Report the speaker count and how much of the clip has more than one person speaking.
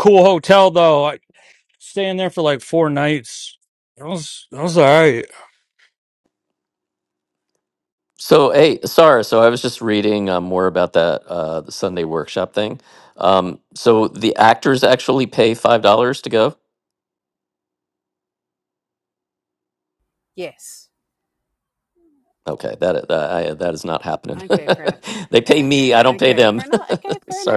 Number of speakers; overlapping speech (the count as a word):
three, about 3%